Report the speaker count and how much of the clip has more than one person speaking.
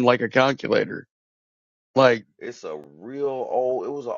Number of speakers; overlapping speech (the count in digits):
2, no overlap